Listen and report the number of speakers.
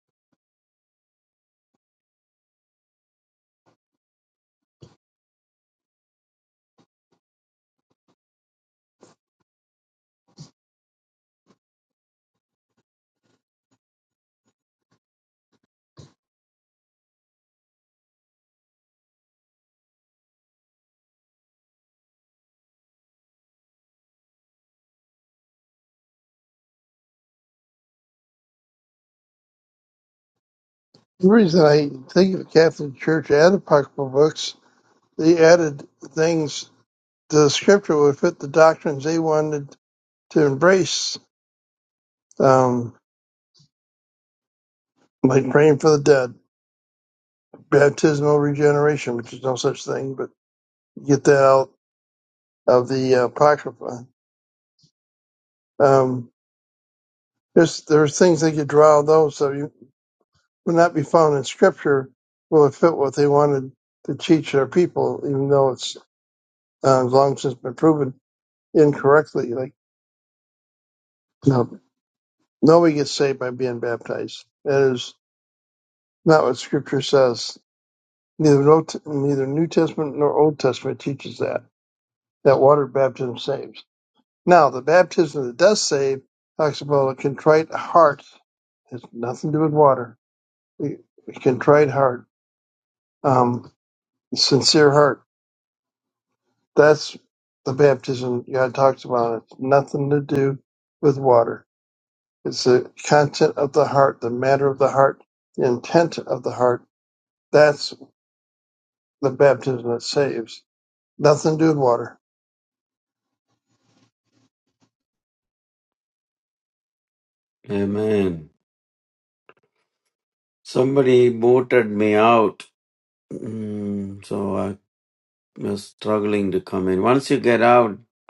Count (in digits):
2